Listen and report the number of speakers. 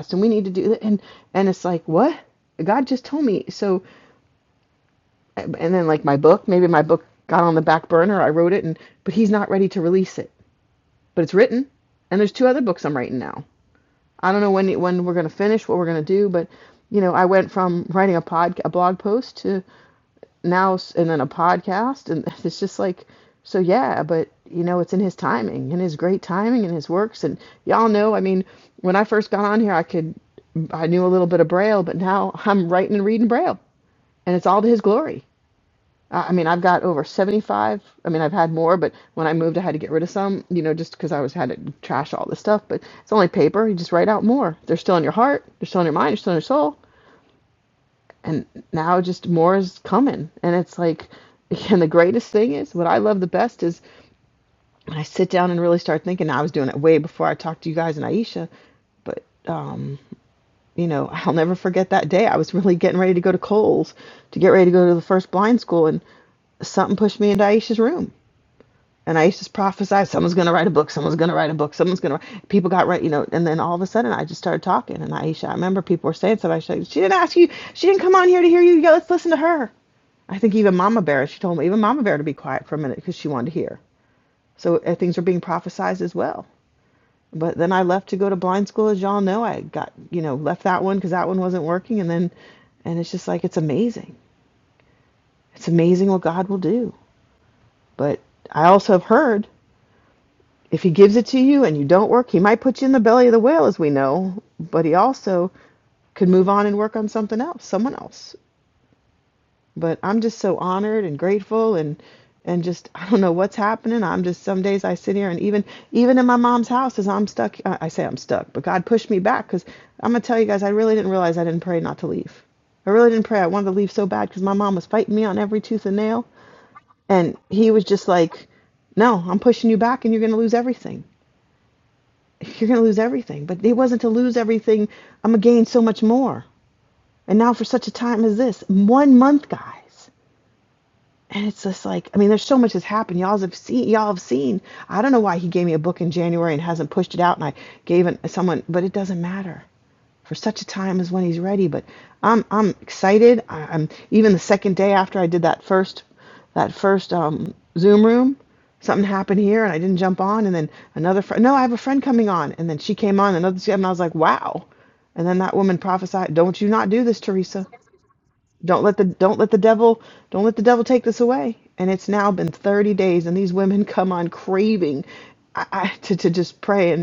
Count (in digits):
1